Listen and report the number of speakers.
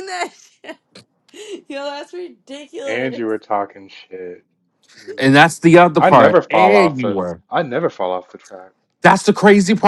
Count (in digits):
3